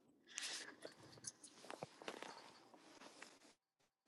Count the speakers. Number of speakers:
zero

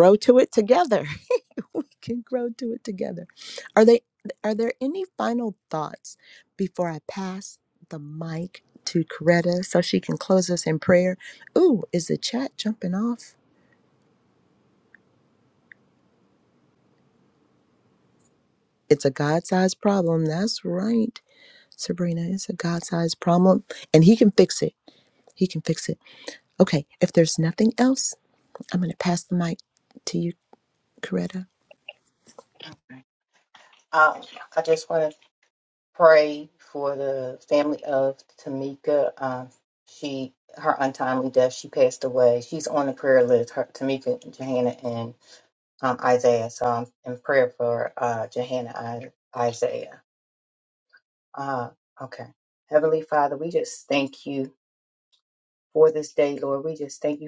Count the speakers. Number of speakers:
two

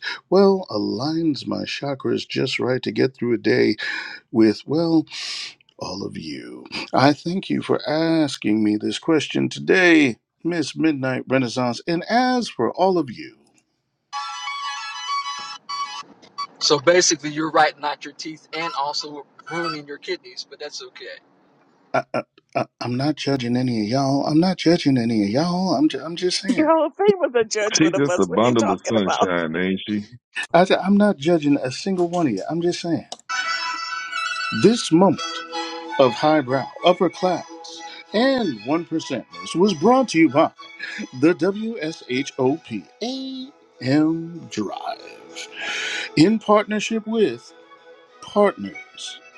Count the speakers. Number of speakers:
four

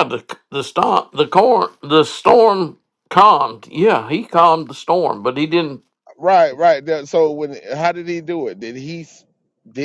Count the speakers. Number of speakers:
two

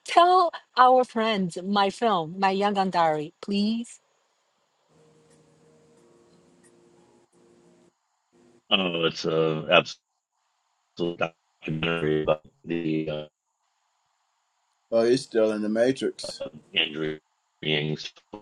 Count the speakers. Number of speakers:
three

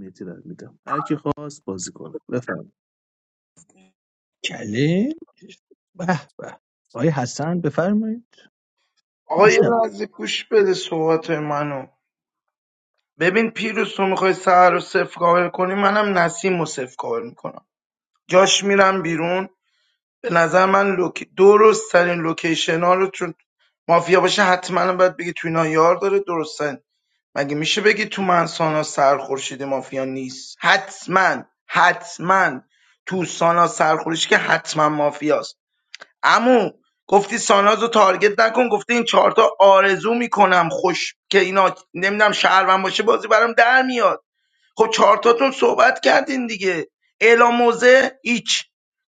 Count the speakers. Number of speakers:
three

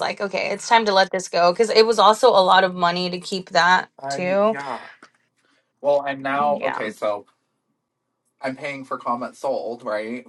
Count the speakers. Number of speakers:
two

